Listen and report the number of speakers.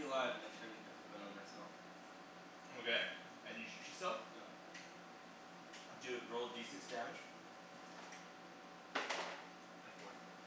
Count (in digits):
2